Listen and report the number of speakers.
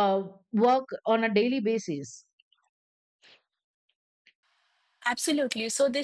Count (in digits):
2